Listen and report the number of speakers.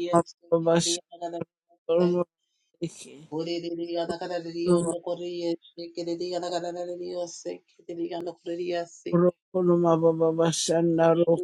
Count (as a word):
two